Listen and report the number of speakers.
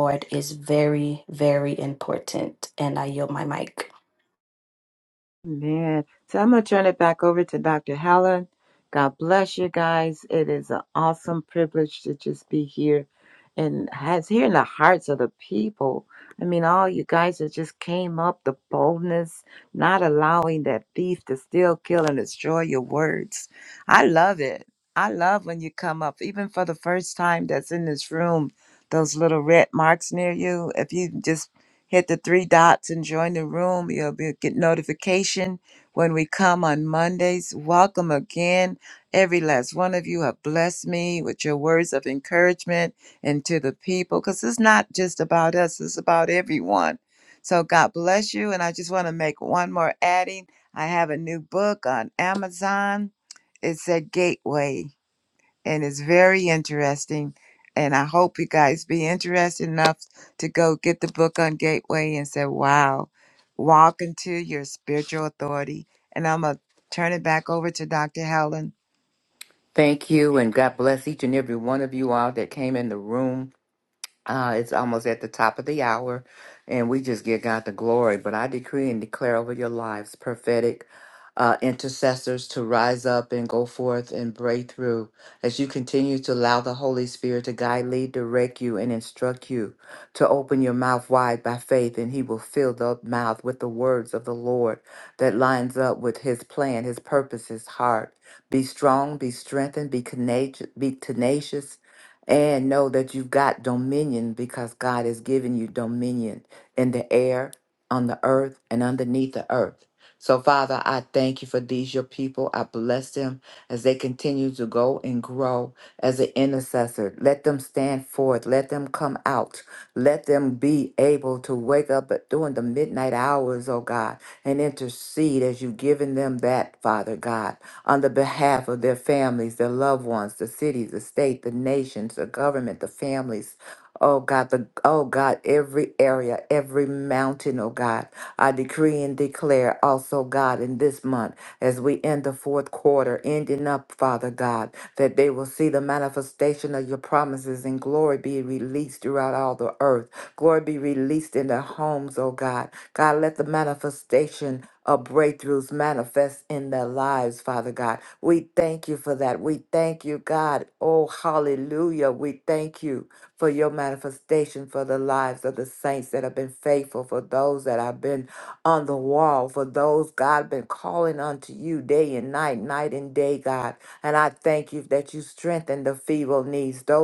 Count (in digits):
3